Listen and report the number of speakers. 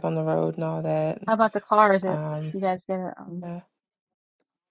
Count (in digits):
2